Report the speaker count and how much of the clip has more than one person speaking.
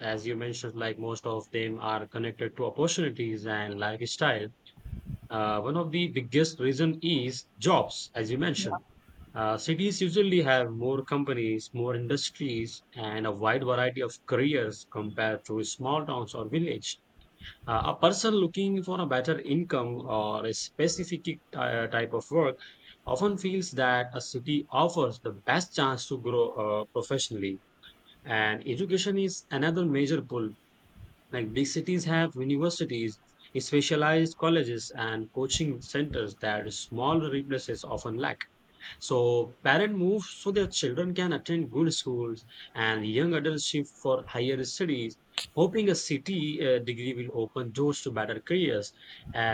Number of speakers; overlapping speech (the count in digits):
1, no overlap